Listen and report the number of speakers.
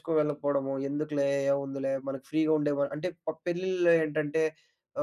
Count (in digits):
1